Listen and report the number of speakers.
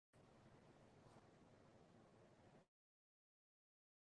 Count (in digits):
0